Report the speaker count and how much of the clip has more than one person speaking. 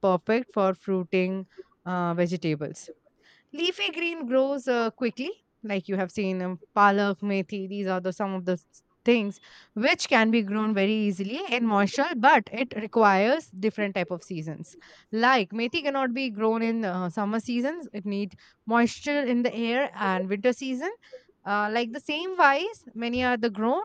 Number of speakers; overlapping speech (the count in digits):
1, no overlap